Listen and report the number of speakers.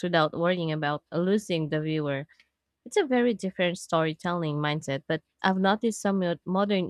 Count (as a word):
one